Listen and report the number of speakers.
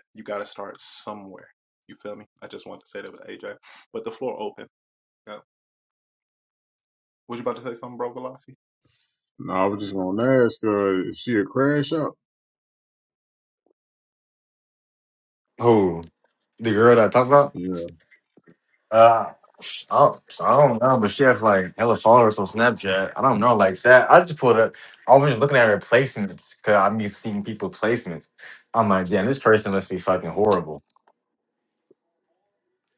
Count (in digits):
3